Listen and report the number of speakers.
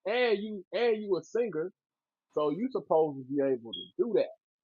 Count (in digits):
1